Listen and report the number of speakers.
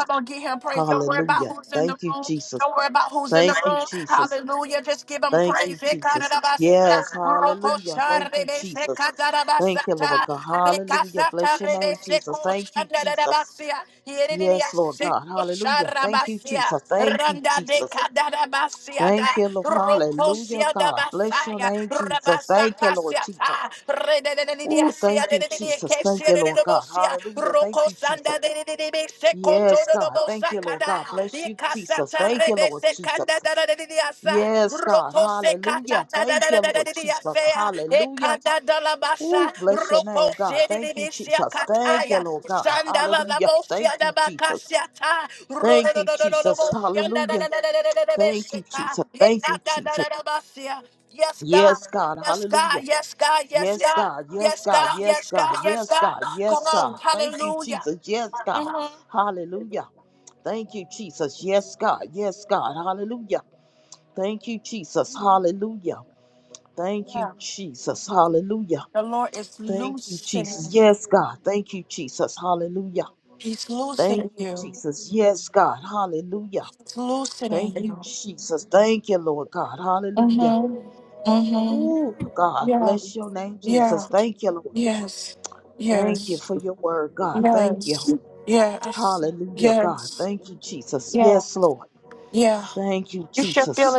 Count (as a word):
two